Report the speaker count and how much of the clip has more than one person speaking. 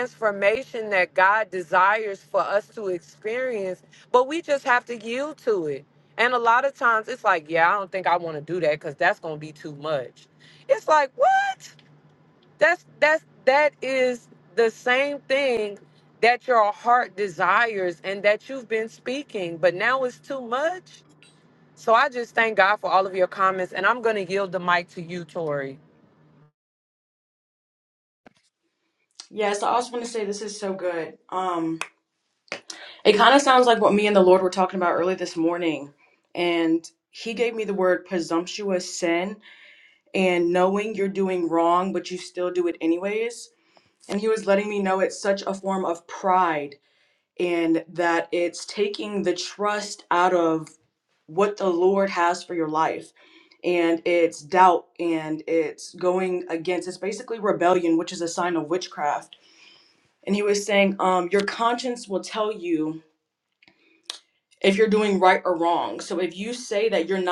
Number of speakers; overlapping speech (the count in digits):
2, no overlap